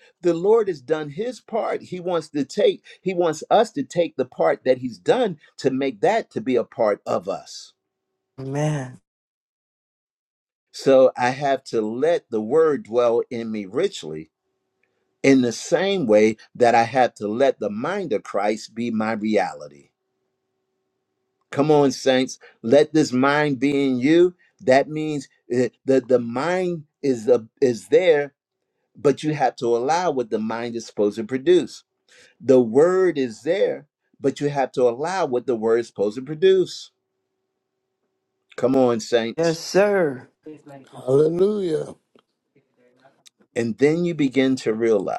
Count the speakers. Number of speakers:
3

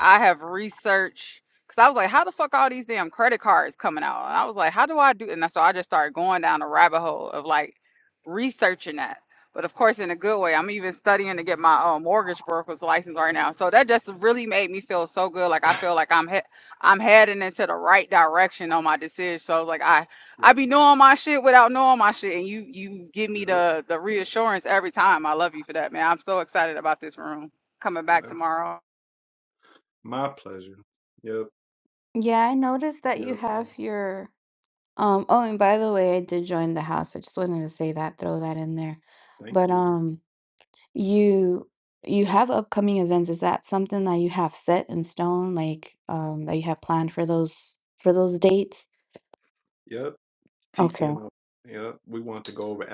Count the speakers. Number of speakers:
3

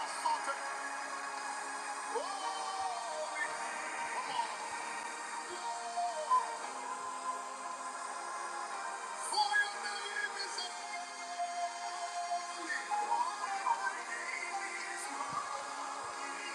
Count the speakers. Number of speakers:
0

